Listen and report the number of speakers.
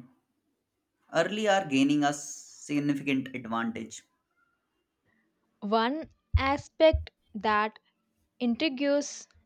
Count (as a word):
two